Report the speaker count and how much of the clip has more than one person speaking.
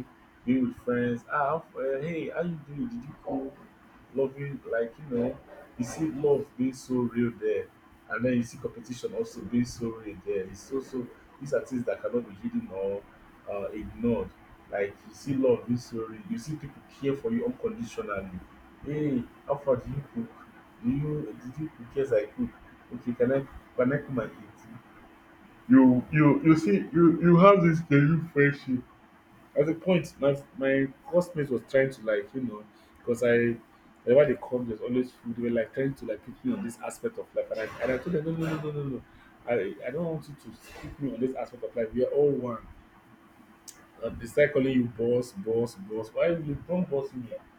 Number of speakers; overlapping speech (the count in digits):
1, no overlap